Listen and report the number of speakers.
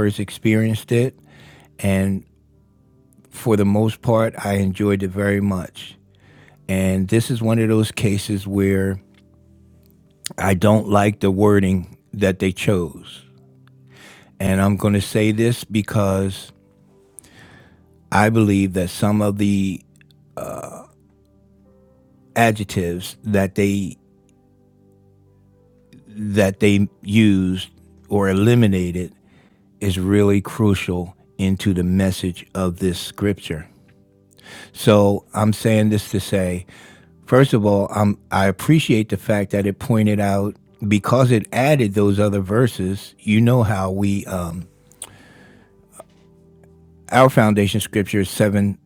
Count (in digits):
1